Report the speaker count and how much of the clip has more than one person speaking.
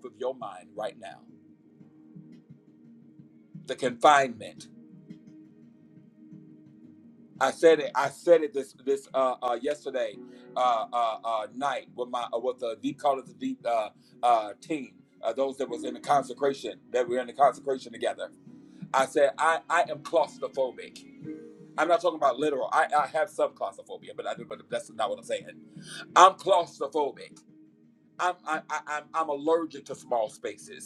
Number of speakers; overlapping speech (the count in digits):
1, no overlap